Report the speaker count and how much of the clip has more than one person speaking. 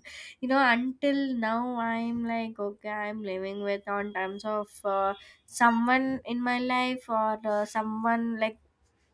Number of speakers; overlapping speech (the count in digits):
1, no overlap